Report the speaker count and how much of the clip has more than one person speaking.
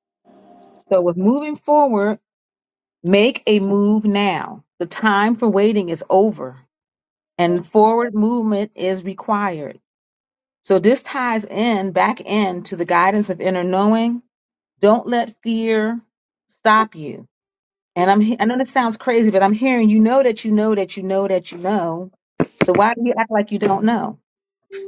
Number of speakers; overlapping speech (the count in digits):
1, no overlap